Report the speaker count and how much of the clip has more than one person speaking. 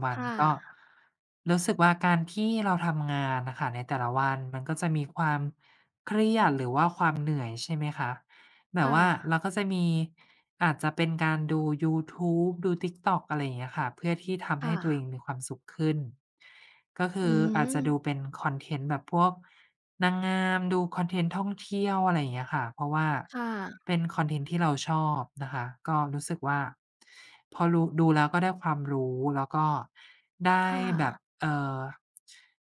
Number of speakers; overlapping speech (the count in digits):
2, about 5%